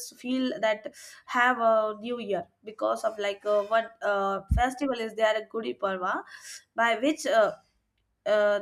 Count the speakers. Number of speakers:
one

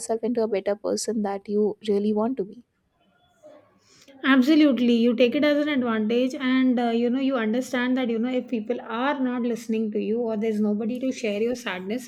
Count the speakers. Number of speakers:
two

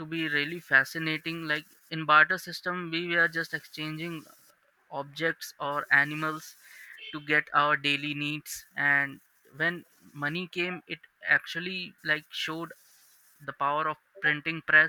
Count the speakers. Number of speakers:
one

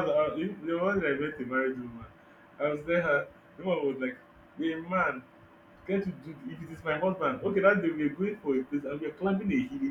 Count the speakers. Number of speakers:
one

